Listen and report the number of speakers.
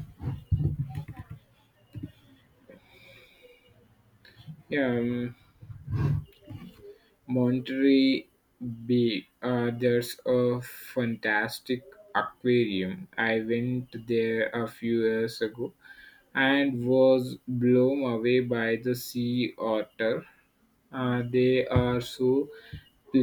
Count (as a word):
one